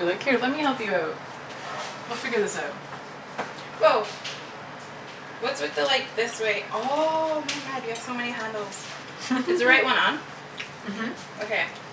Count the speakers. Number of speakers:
2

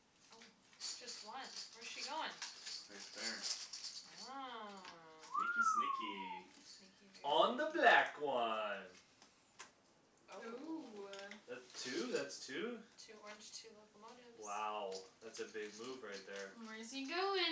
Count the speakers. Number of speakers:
4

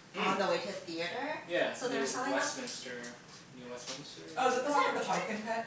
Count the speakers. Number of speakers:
3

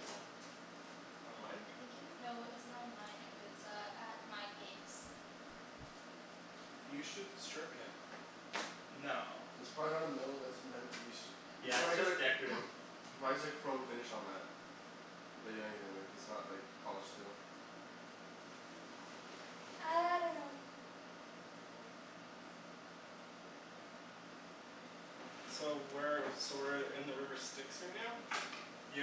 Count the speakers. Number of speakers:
4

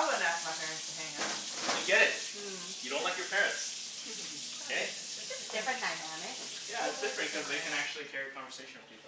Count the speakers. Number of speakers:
4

